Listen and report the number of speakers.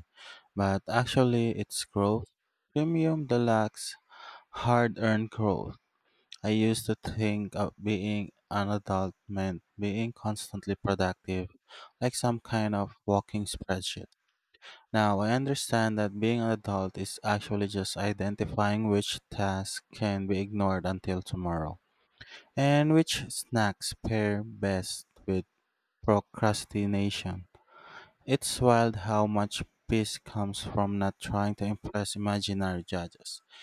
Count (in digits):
1